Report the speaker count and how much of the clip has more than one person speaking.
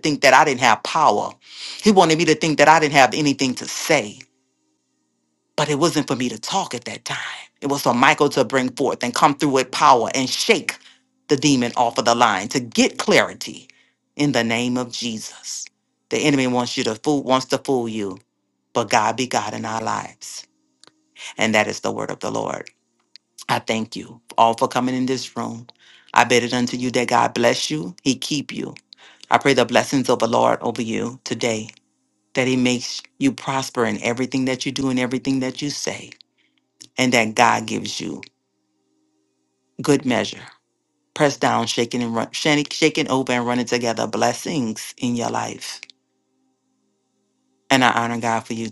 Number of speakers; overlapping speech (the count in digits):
1, no overlap